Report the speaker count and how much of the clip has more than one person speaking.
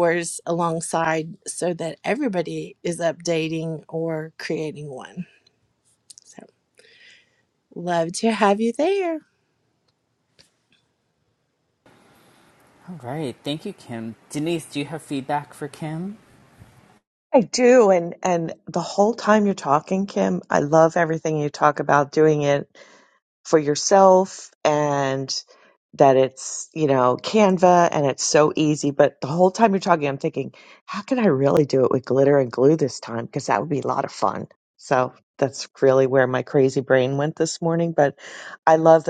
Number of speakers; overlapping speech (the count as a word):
three, no overlap